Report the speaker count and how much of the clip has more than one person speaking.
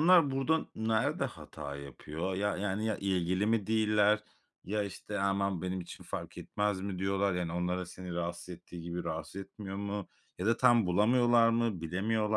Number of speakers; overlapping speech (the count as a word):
one, no overlap